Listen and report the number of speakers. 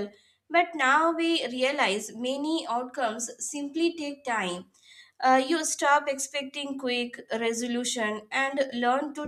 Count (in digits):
1